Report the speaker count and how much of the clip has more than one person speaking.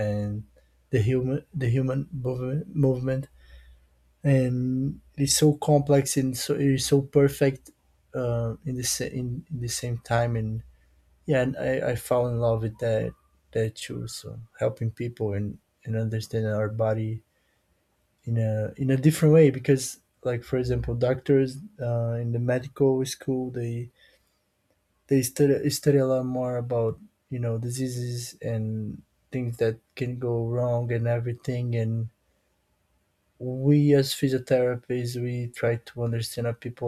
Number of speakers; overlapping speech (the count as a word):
one, no overlap